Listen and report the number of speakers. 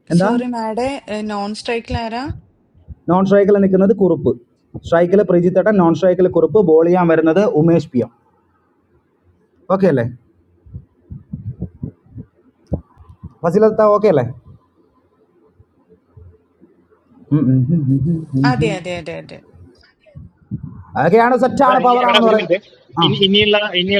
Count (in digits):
3